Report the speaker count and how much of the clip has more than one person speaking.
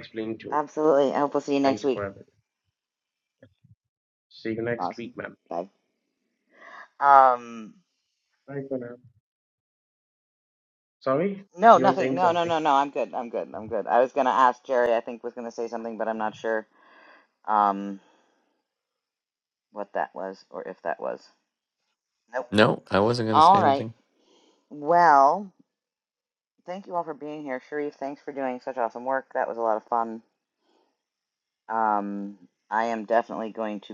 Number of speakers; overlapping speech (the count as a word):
three, about 6%